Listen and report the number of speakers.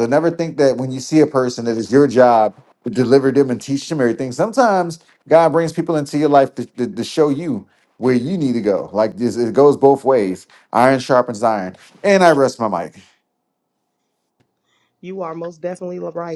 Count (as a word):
two